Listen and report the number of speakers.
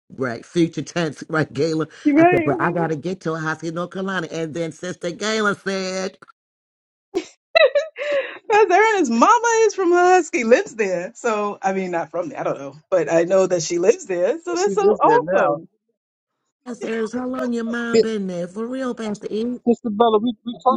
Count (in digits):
3